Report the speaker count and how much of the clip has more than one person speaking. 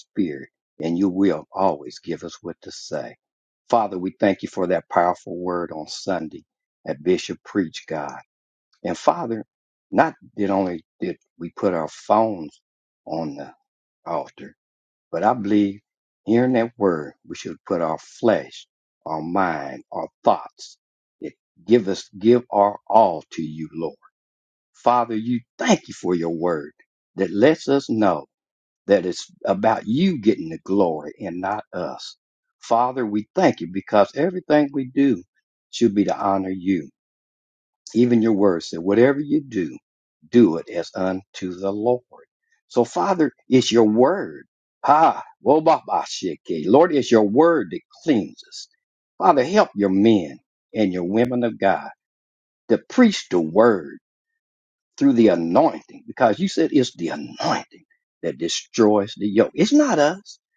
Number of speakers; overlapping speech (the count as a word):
one, no overlap